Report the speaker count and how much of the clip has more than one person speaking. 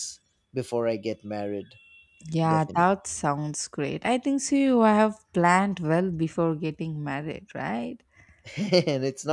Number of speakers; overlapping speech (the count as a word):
two, about 4%